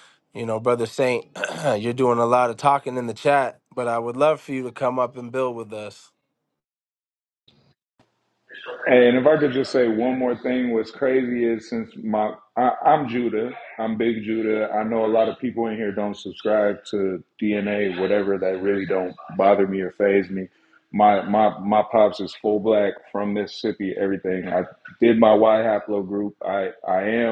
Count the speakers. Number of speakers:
2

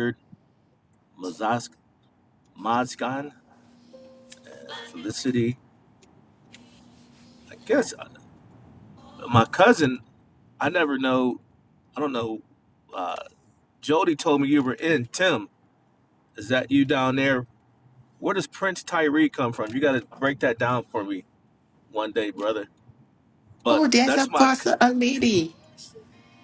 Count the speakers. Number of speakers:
2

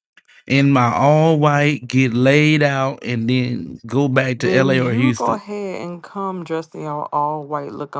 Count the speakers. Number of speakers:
2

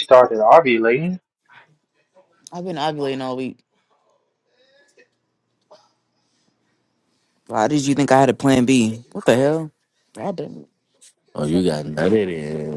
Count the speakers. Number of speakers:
3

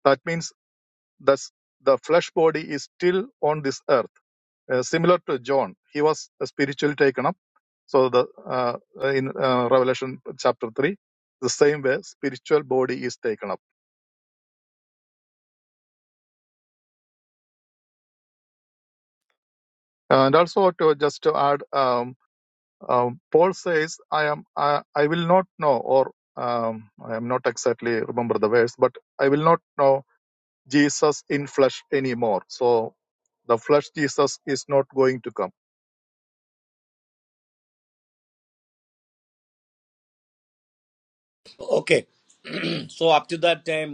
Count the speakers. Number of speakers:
2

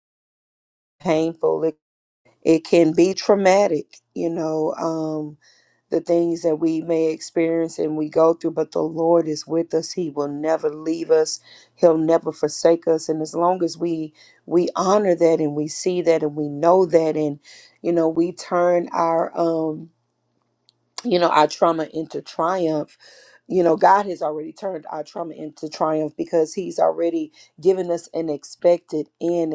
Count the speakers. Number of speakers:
1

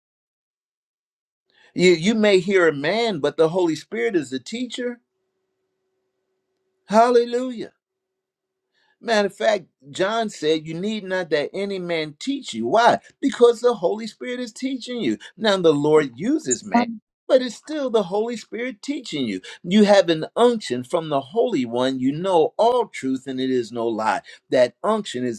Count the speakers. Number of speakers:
1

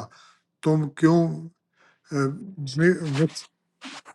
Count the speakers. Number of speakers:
1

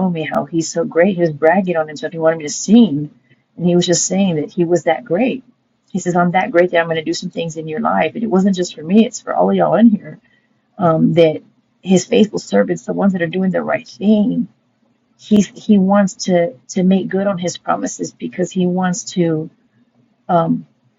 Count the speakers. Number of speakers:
1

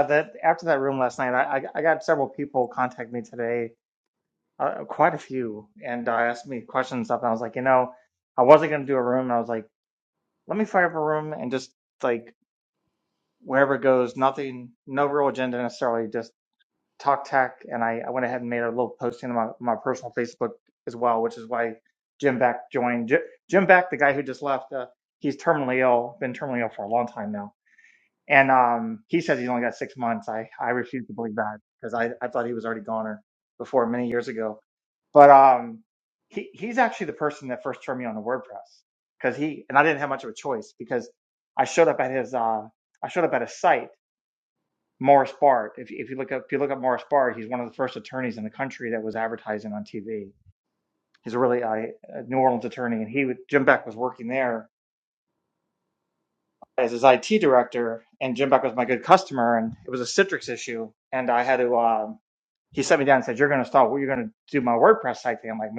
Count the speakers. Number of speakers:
1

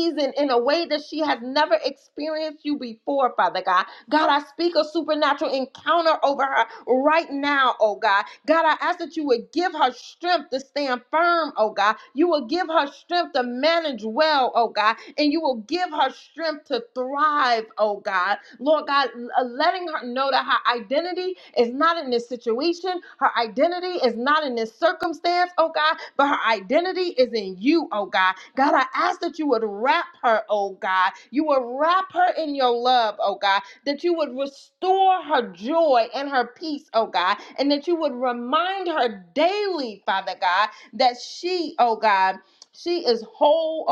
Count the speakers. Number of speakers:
1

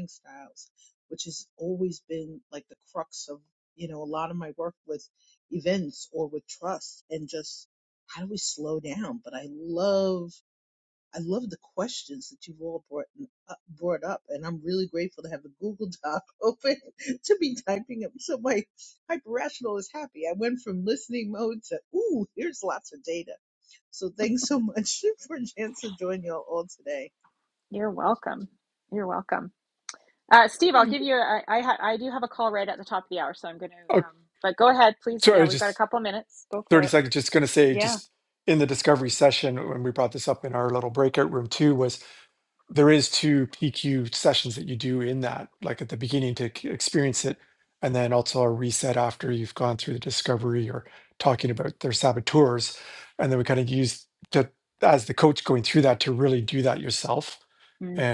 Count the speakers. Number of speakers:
3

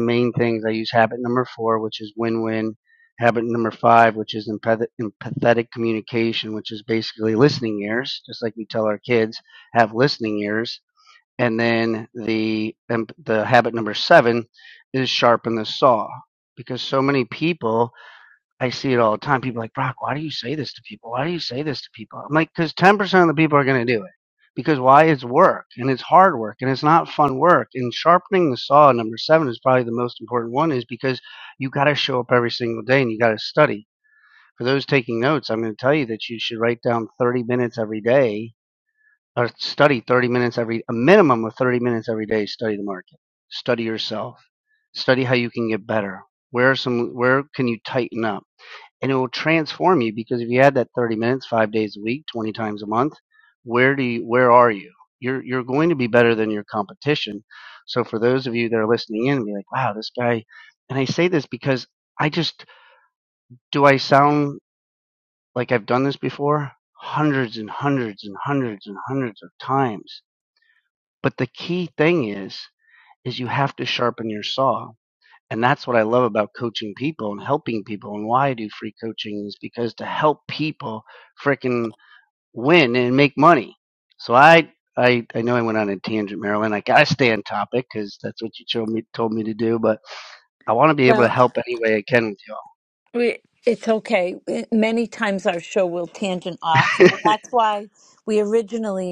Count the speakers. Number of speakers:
2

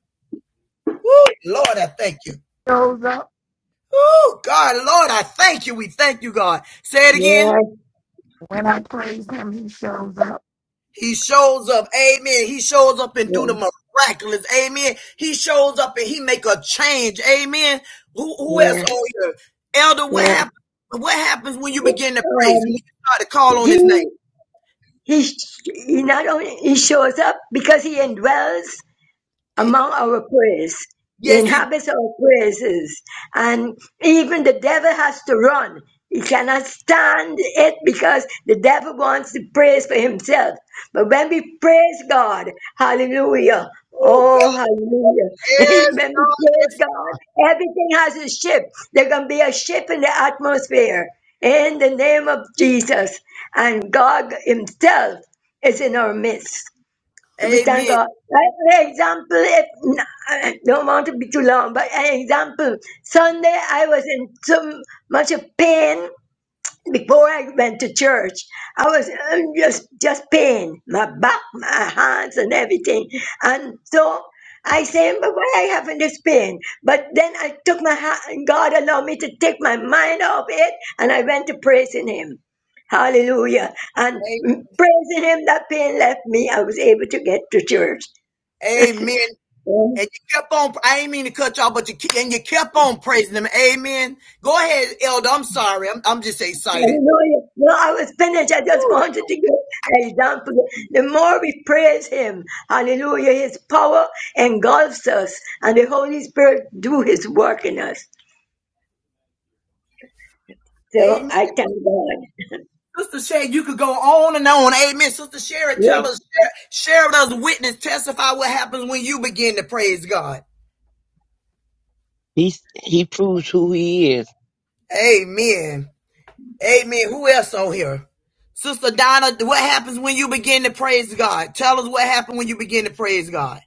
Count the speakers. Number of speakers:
4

